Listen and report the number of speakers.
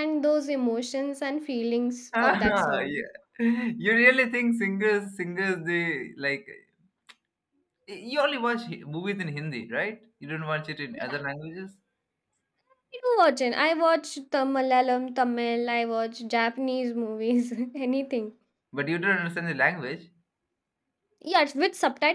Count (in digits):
2